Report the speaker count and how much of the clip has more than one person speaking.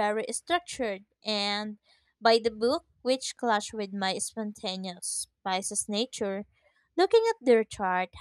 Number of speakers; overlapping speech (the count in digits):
1, no overlap